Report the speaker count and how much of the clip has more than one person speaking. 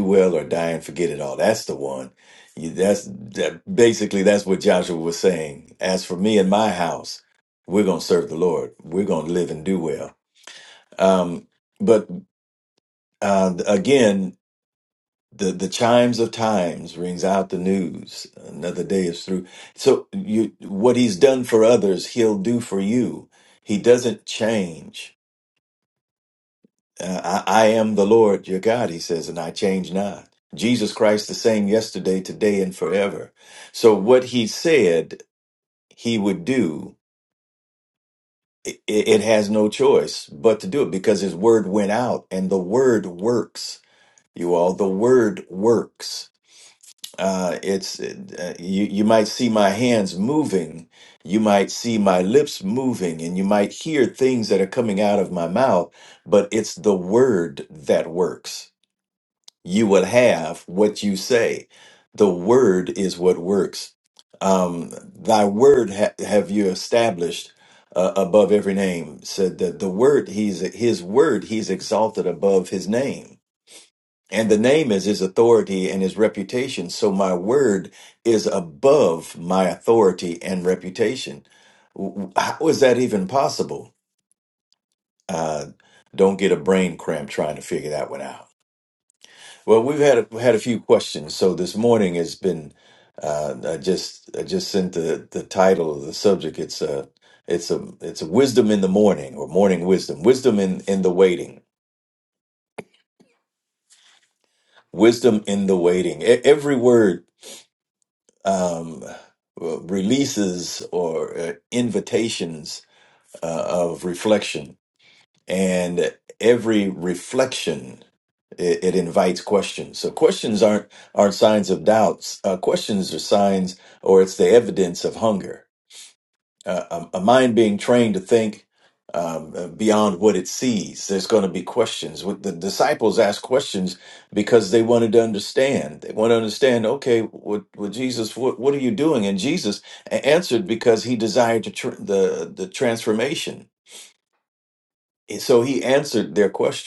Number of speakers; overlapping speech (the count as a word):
one, no overlap